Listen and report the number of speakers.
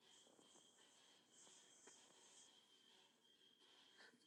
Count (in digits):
0